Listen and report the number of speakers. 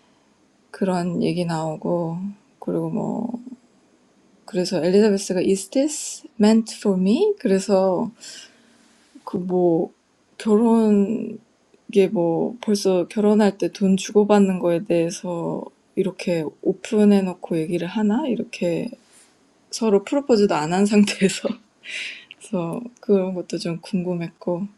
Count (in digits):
1